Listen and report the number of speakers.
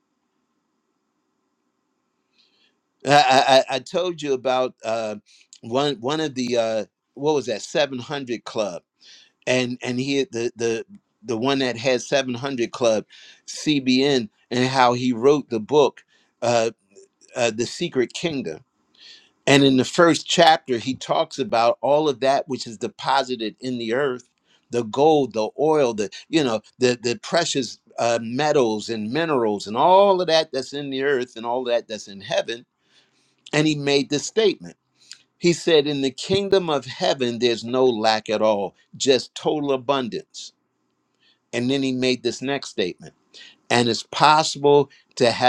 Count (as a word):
one